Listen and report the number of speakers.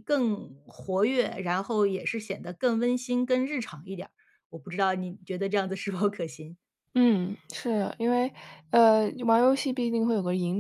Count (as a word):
two